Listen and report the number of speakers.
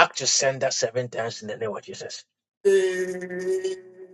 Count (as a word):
two